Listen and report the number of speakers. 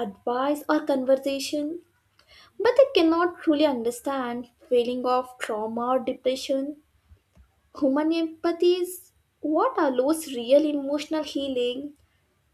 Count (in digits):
1